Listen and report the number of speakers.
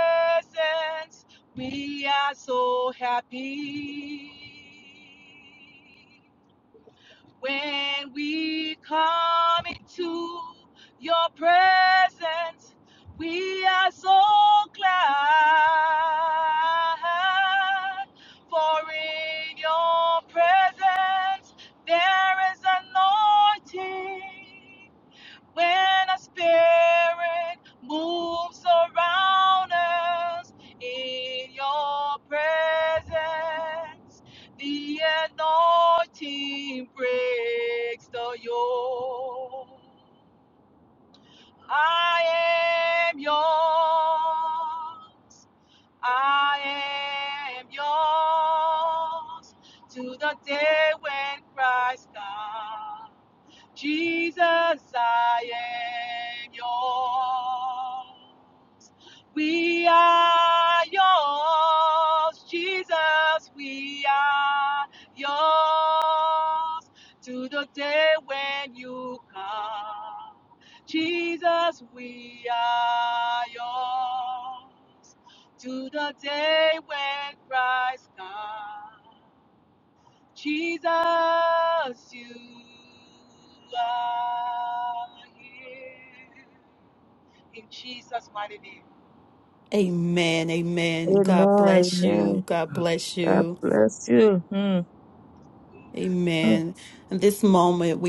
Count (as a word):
three